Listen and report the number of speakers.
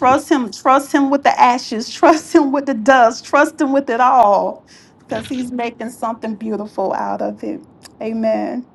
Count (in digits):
1